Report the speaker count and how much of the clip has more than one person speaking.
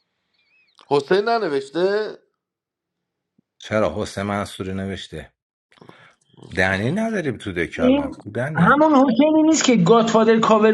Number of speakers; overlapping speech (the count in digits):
3, about 4%